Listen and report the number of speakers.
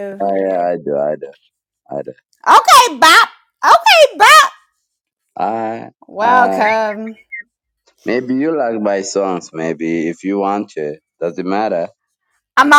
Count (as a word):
two